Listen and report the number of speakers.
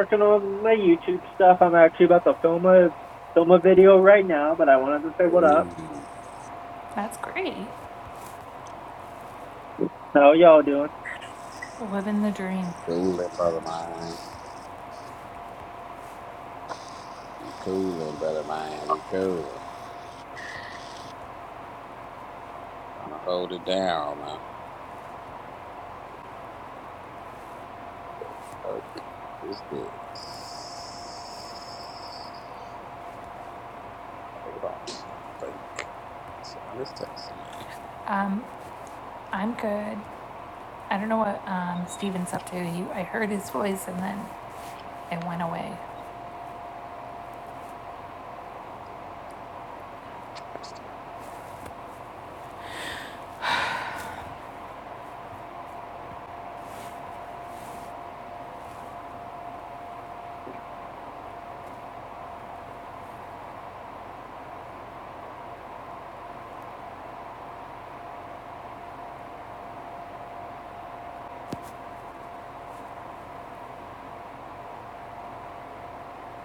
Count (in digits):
3